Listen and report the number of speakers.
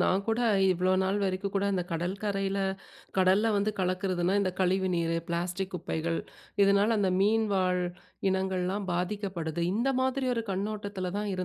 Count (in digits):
1